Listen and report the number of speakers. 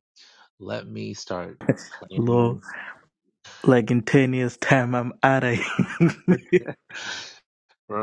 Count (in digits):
2